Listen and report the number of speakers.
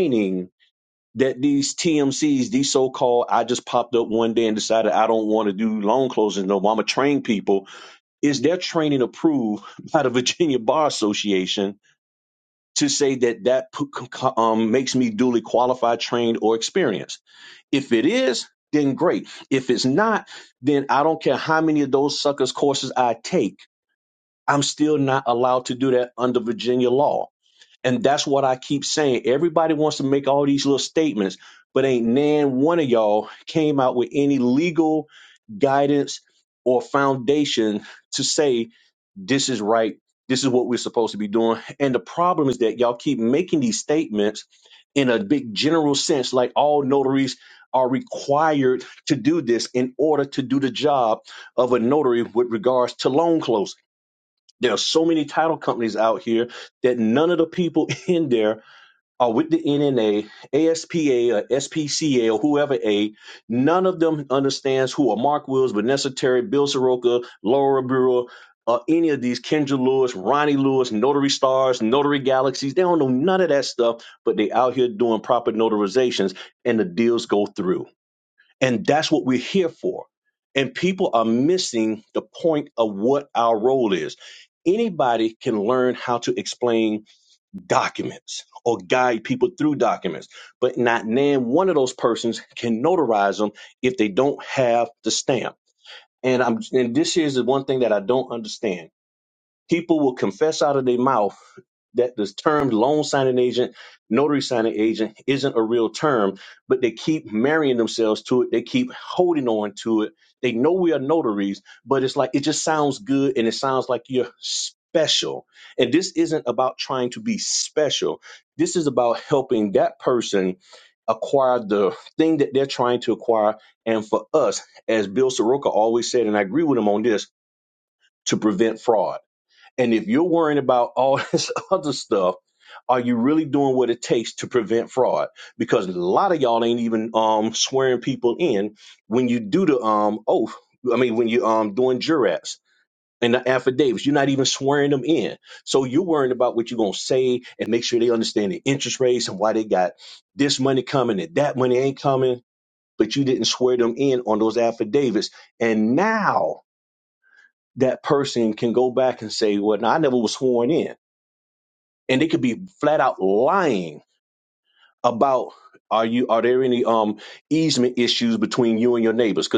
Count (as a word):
one